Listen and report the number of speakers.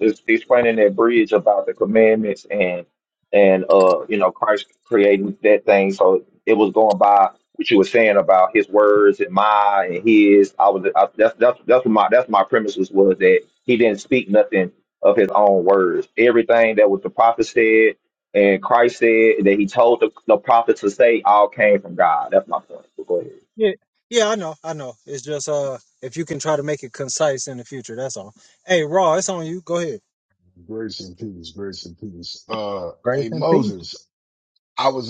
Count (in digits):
3